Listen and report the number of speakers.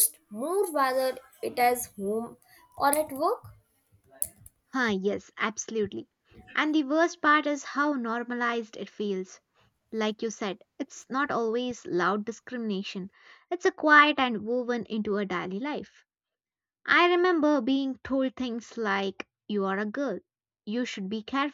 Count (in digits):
2